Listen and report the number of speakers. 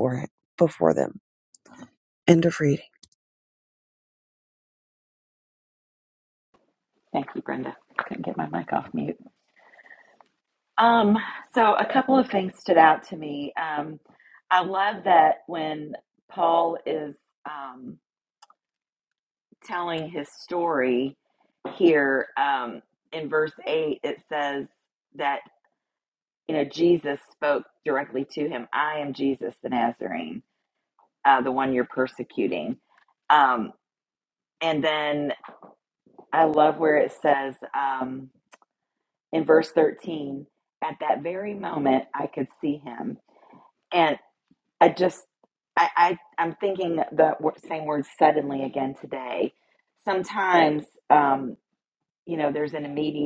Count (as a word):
two